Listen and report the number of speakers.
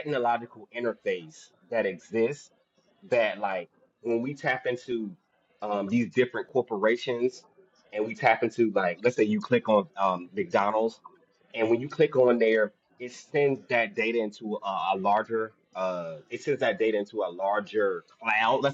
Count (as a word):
one